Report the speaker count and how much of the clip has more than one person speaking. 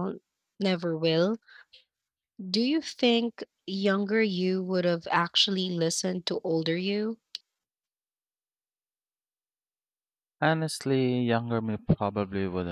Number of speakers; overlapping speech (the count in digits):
2, no overlap